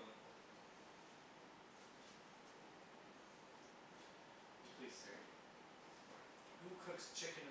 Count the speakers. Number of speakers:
1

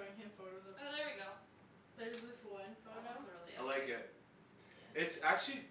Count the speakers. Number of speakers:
3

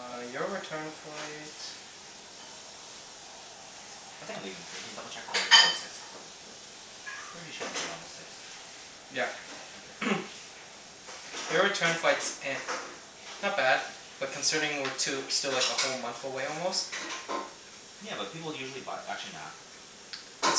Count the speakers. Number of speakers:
2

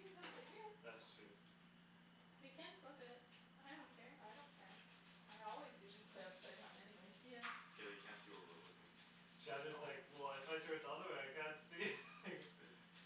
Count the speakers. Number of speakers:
4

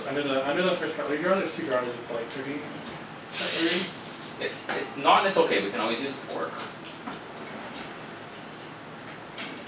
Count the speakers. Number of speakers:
2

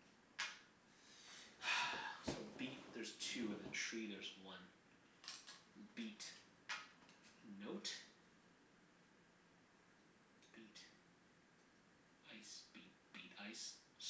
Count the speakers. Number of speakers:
1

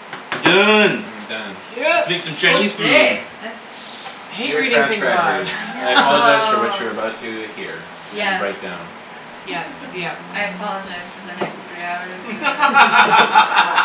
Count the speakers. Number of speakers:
4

